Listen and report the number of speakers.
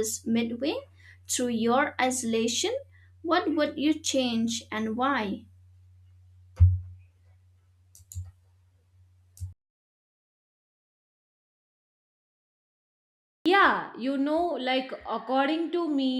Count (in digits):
2